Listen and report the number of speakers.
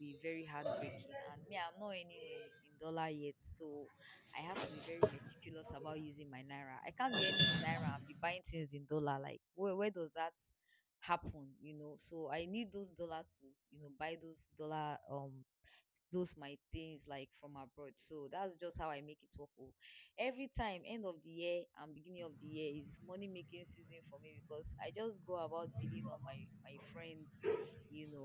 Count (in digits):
1